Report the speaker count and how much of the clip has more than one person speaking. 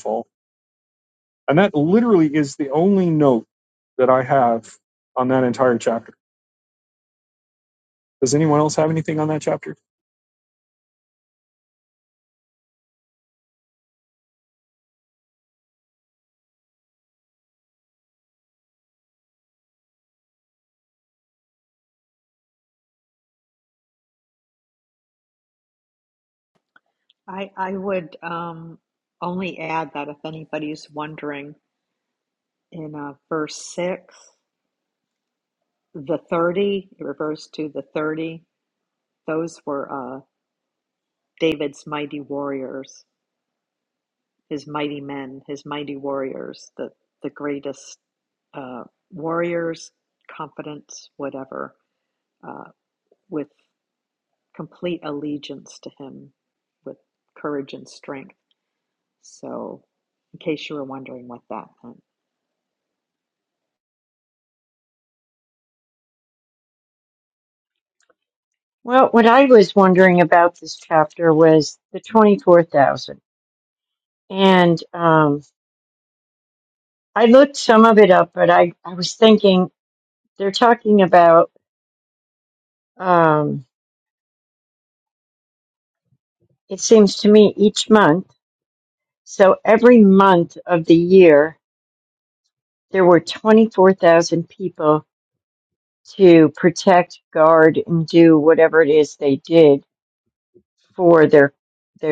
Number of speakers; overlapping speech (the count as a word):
three, no overlap